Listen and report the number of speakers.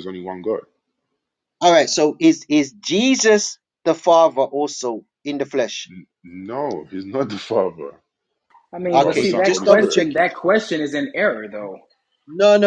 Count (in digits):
3